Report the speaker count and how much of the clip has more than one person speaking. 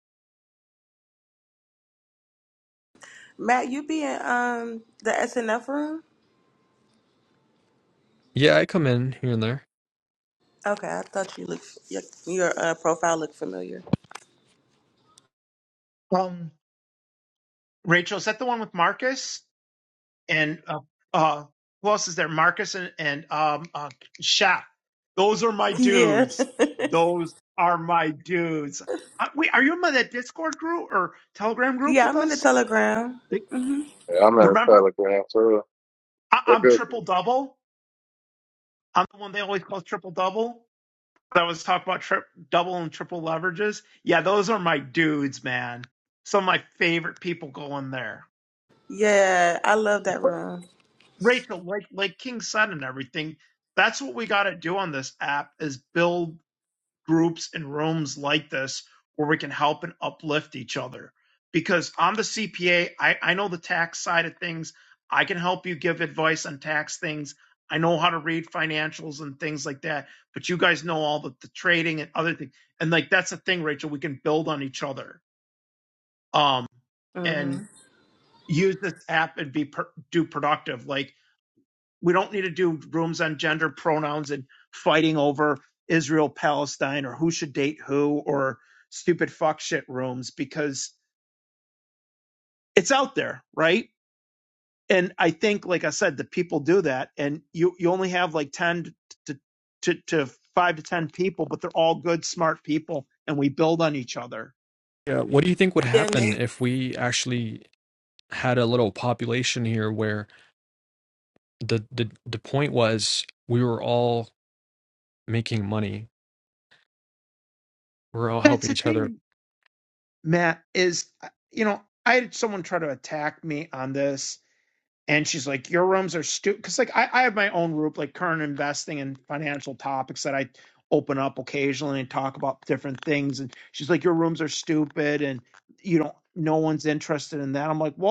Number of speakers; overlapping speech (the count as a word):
four, about 3%